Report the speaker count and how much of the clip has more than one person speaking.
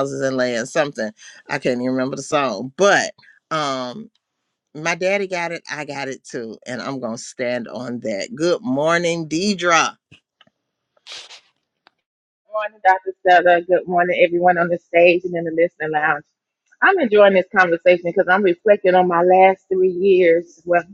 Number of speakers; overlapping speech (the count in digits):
2, no overlap